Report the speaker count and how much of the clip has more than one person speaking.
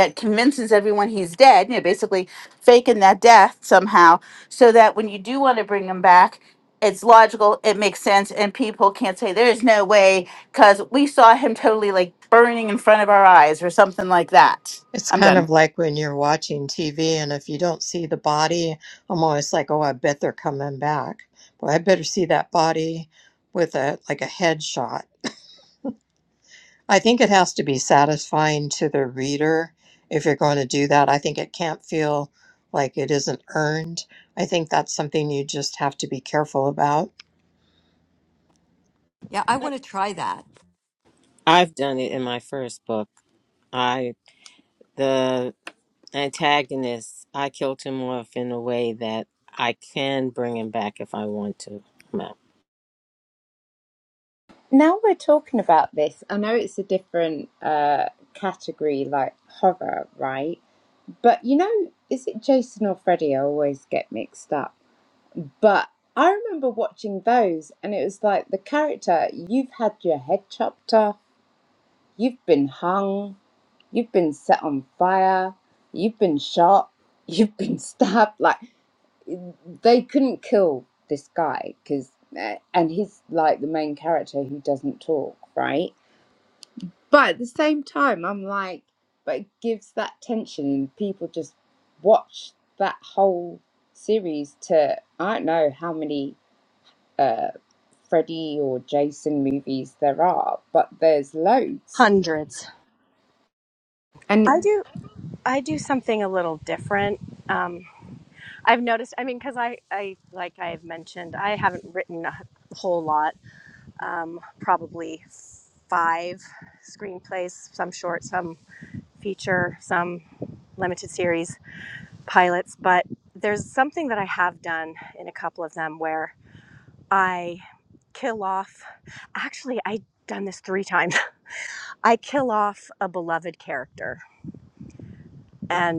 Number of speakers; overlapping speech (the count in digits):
6, under 1%